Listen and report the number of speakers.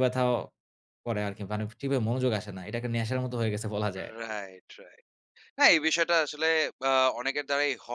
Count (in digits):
2